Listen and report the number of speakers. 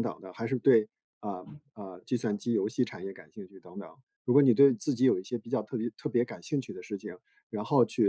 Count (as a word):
one